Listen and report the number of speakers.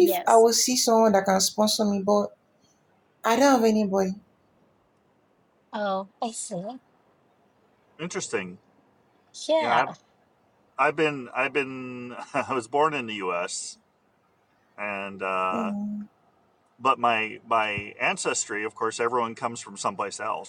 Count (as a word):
three